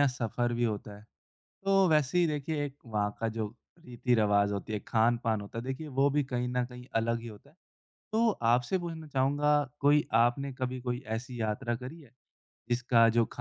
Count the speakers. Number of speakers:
1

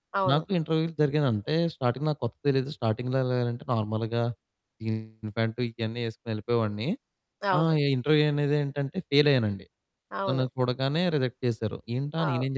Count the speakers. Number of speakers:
2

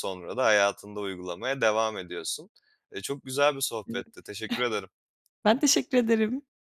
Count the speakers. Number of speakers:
2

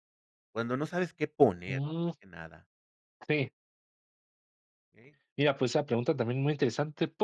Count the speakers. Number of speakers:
2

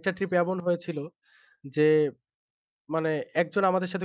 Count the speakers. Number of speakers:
1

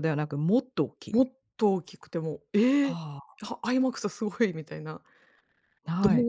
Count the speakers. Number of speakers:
2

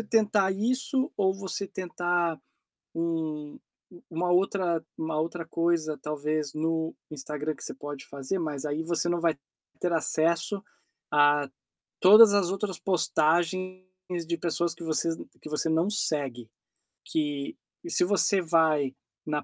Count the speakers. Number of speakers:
1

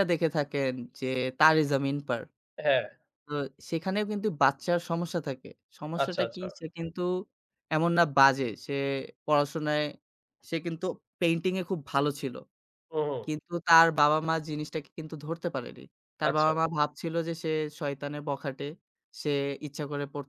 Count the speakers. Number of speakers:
2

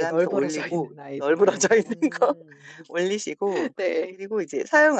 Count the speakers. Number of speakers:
2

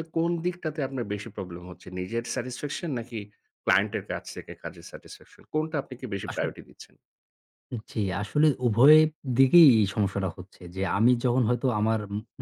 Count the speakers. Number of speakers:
2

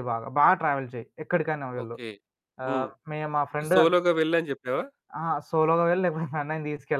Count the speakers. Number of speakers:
2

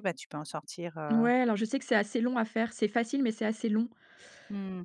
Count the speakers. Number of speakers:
2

